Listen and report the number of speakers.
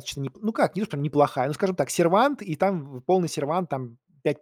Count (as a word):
one